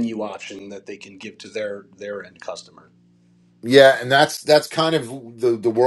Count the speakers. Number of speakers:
2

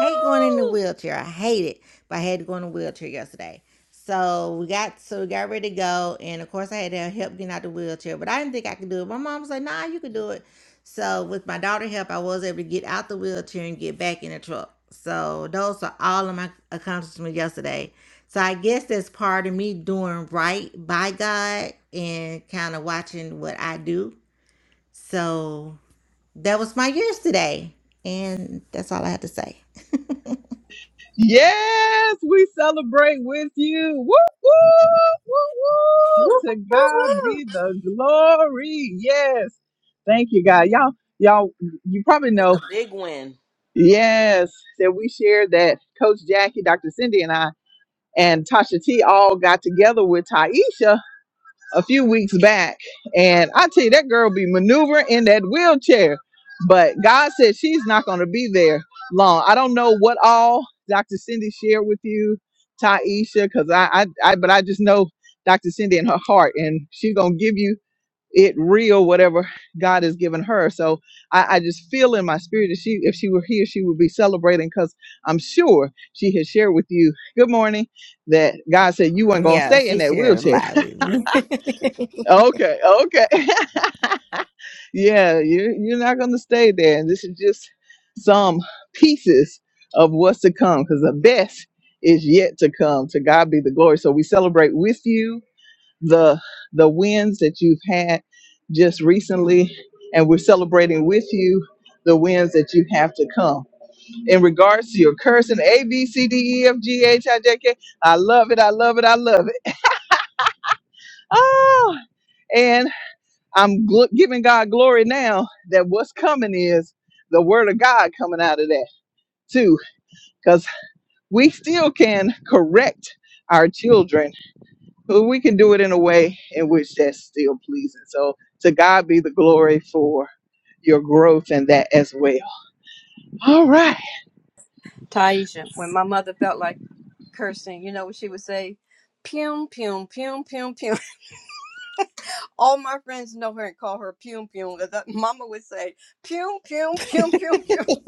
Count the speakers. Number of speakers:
4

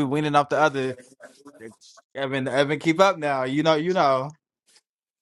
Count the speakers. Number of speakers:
1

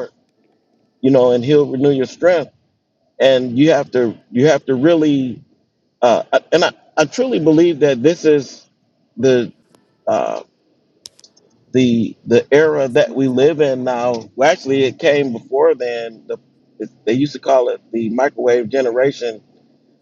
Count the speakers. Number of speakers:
1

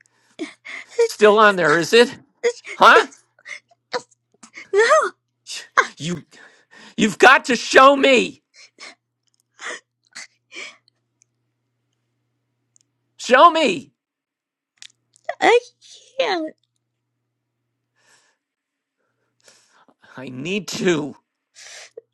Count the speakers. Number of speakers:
2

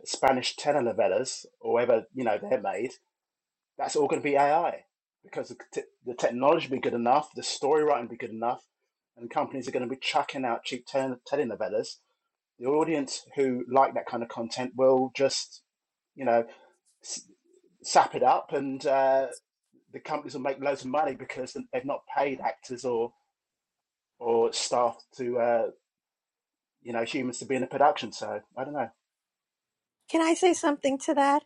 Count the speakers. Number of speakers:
2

